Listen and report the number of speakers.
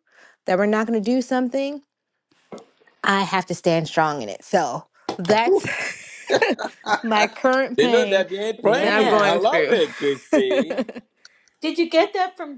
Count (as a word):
three